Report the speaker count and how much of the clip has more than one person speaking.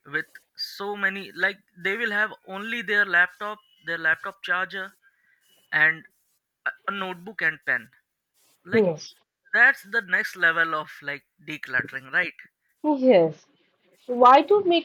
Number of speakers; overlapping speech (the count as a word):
two, about 1%